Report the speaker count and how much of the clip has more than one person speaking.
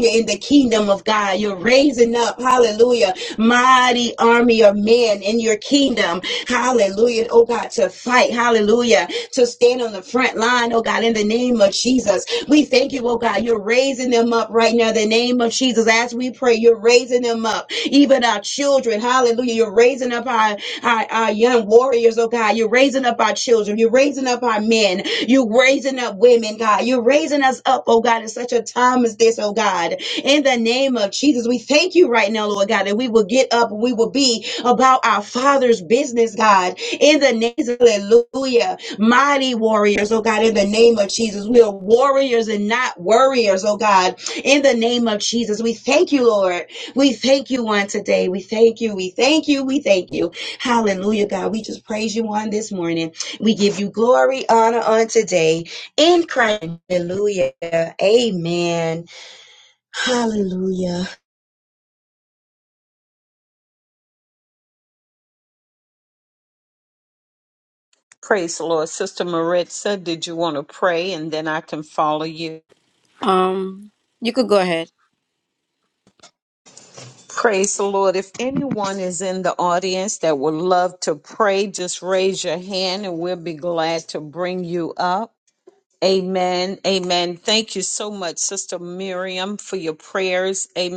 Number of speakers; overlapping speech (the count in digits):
3, no overlap